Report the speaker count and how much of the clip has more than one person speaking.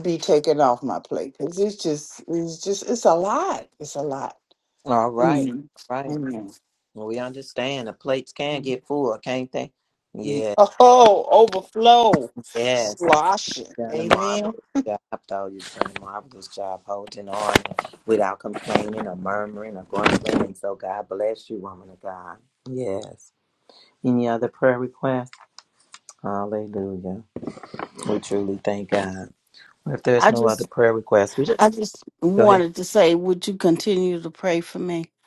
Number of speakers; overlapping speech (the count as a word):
three, about 7%